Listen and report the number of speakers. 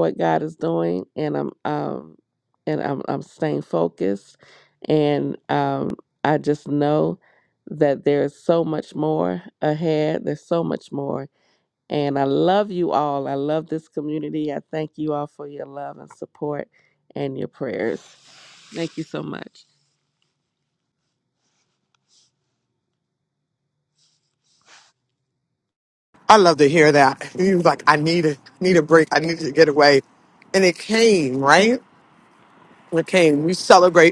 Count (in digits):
2